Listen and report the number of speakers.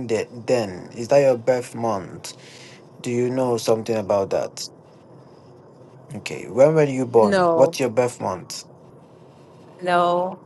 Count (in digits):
2